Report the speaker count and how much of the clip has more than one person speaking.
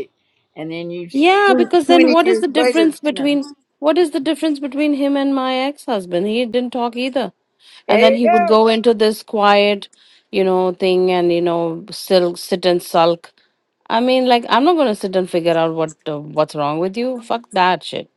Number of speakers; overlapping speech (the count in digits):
2, about 14%